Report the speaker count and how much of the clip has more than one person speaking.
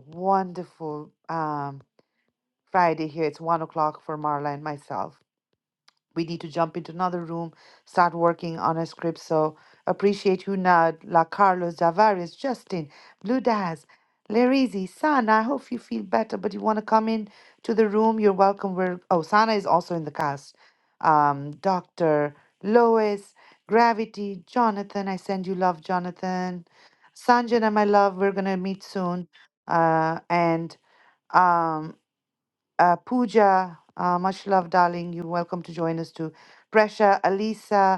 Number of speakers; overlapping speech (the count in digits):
1, no overlap